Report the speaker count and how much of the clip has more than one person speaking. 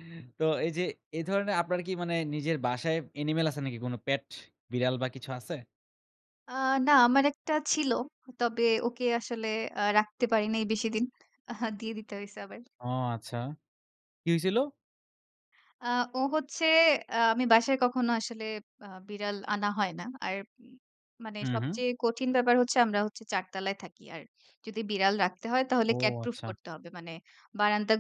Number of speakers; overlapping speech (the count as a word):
two, about 3%